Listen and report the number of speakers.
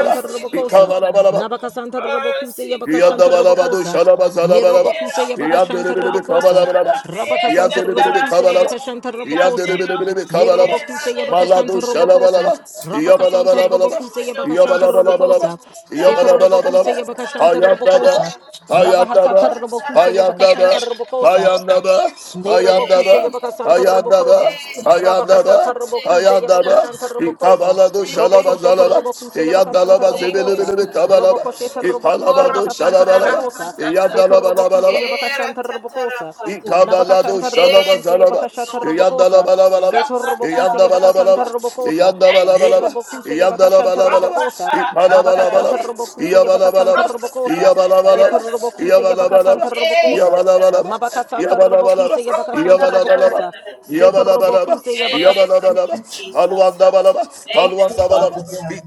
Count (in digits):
3